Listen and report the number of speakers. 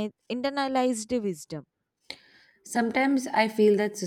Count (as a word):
two